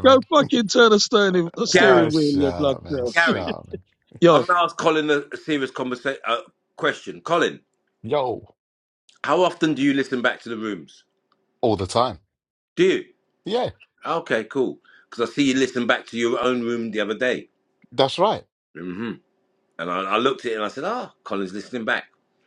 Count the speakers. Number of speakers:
three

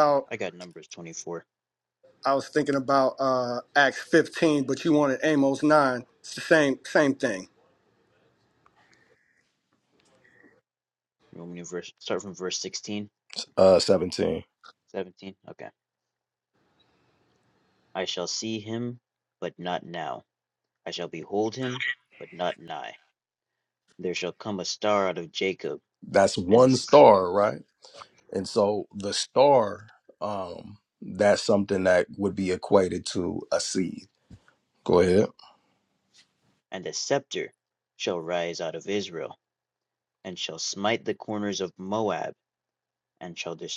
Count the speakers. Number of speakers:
three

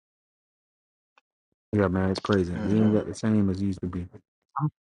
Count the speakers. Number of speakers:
one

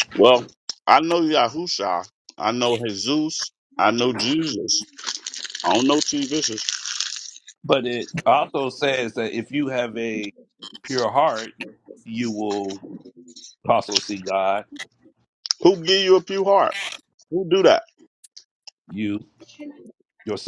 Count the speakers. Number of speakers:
two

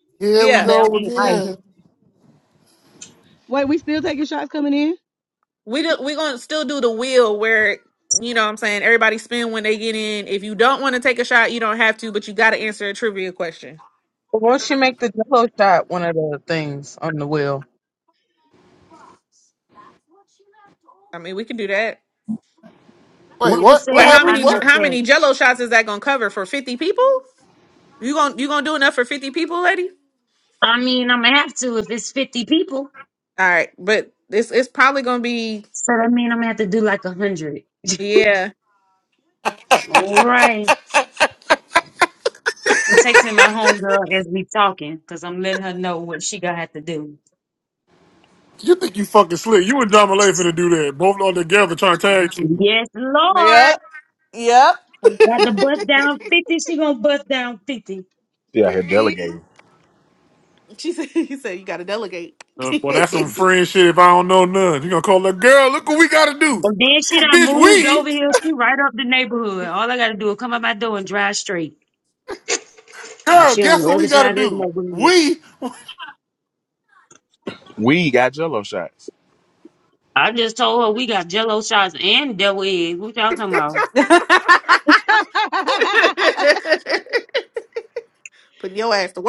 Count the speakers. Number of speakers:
six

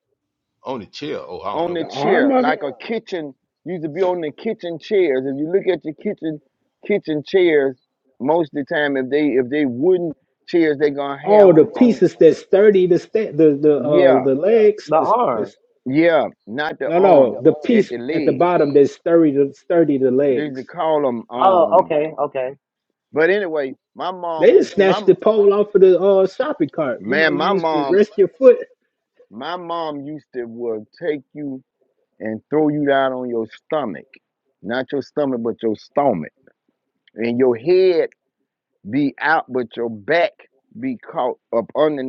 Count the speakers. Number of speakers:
four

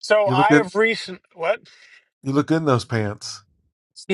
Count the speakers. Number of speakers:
two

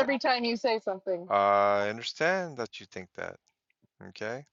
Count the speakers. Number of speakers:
two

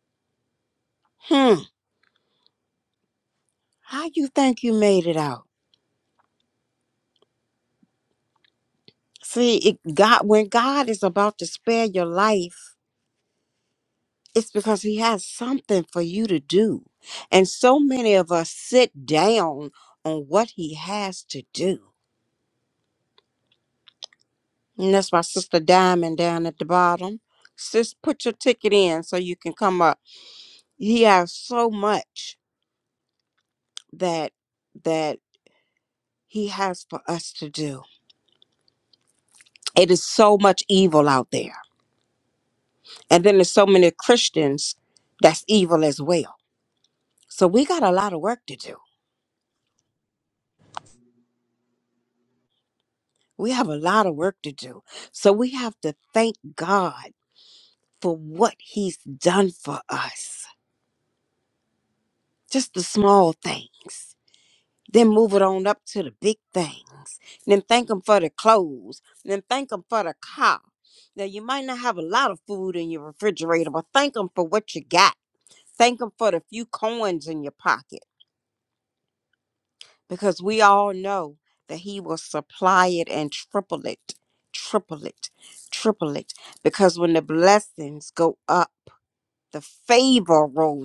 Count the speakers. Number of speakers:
one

